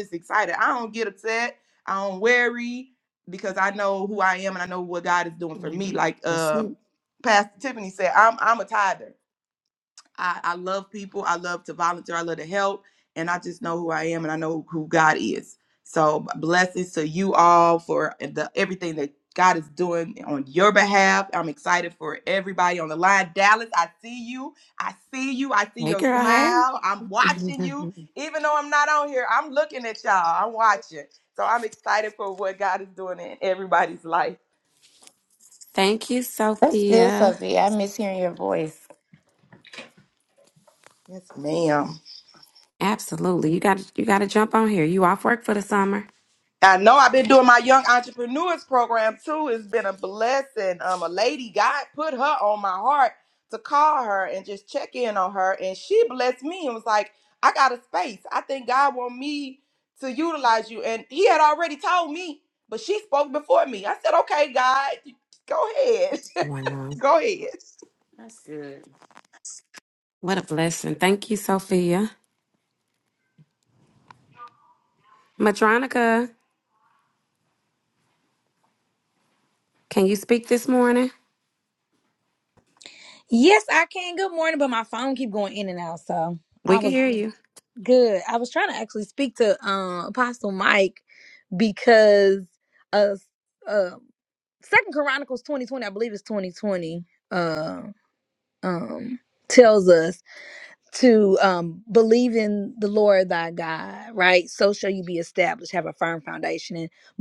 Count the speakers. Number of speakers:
four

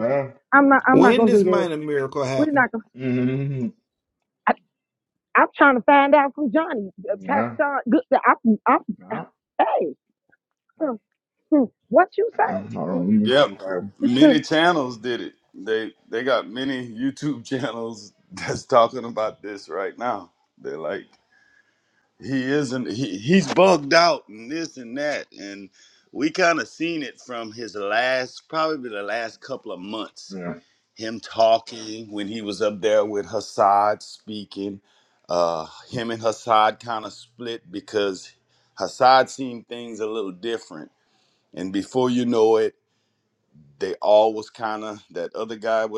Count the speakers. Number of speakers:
four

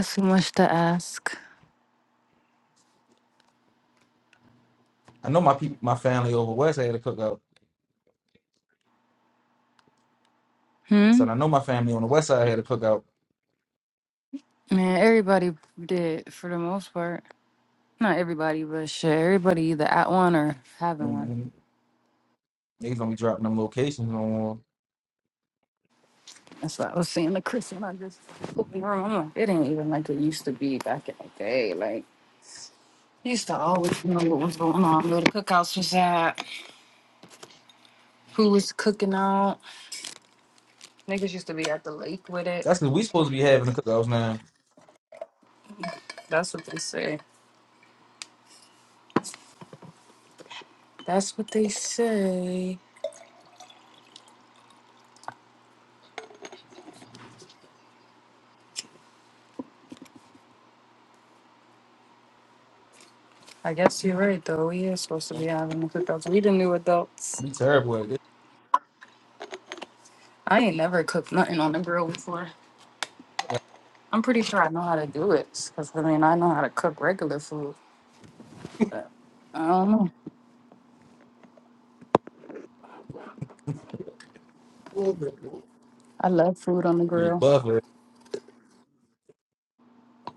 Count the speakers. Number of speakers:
two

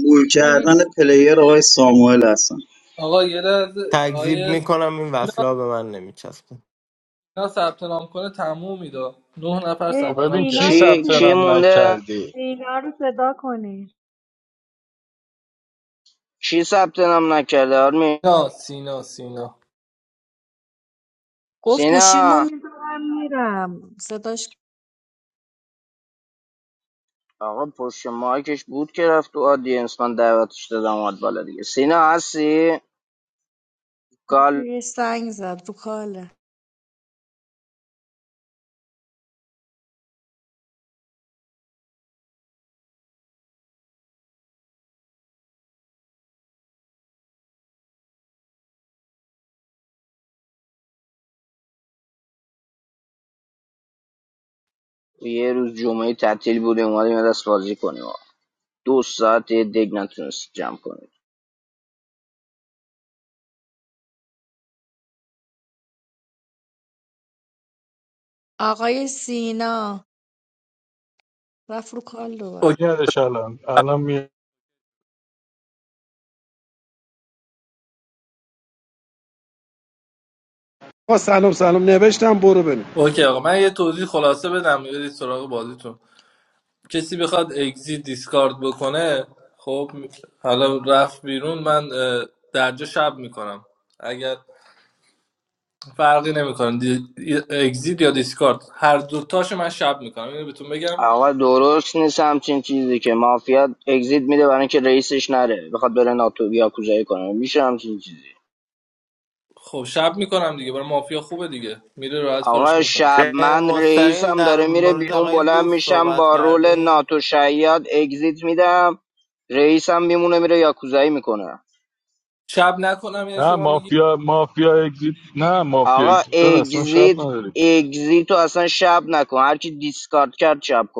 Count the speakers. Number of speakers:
seven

